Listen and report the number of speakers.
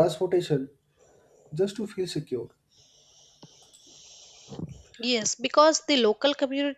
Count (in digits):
2